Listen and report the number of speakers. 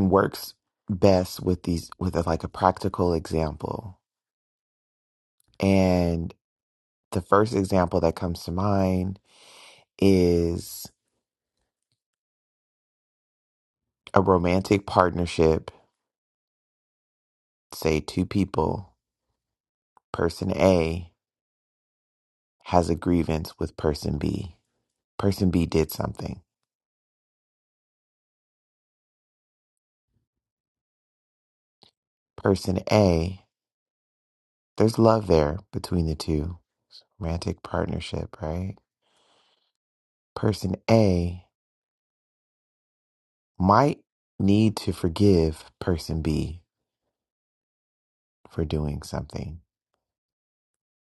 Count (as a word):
one